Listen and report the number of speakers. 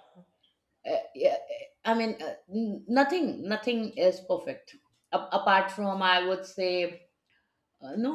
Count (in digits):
1